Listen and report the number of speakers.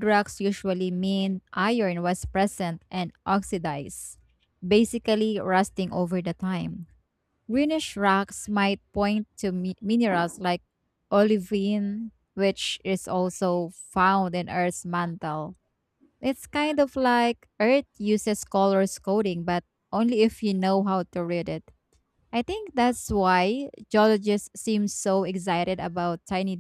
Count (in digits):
1